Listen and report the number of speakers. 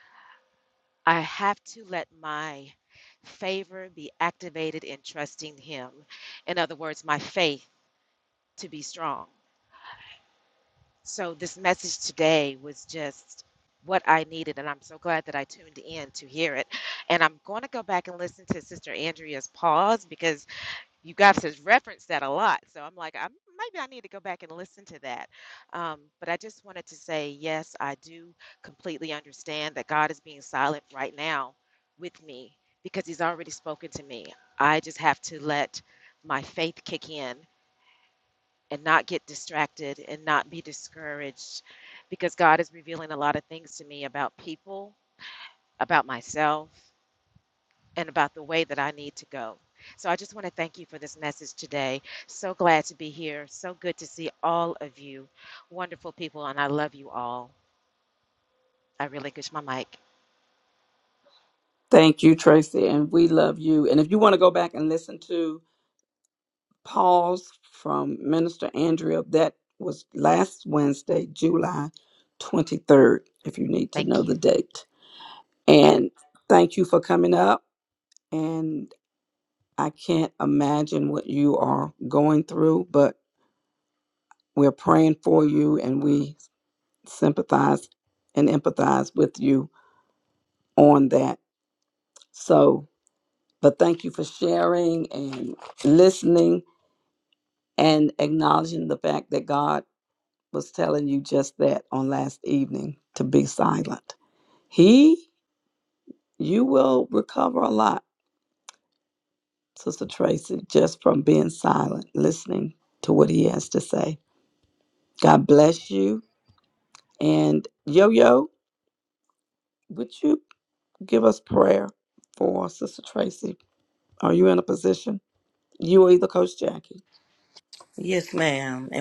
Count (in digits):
3